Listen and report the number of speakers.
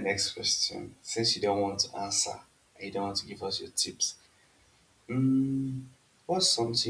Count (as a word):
one